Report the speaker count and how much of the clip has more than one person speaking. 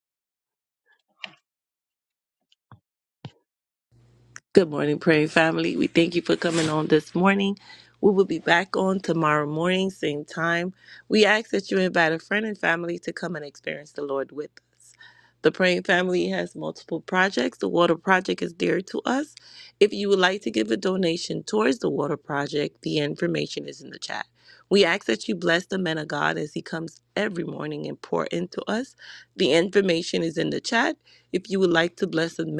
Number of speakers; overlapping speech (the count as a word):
one, no overlap